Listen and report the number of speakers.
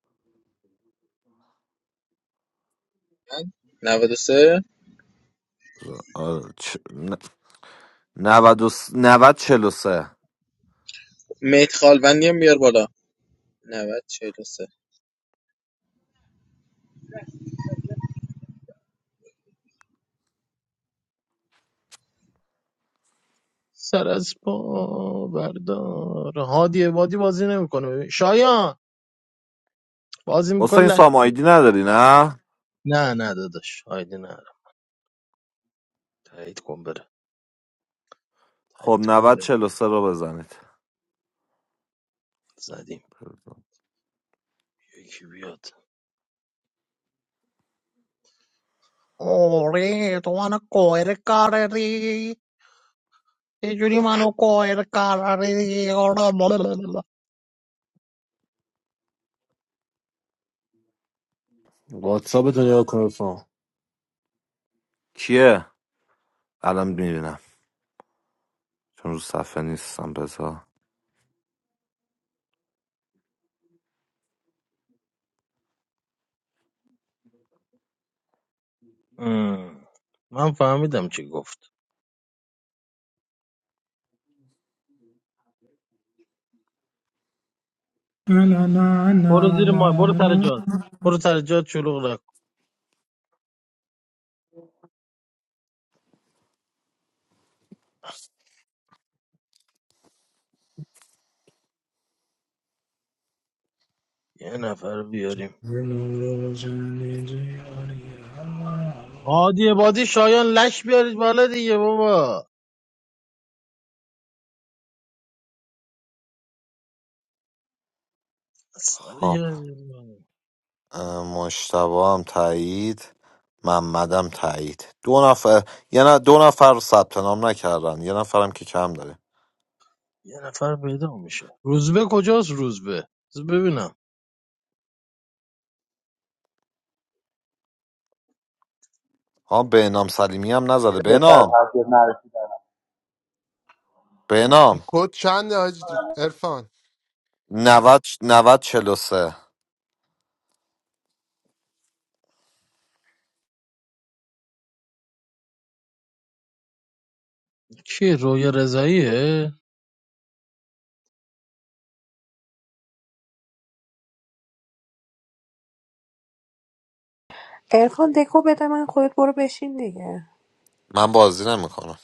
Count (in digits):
8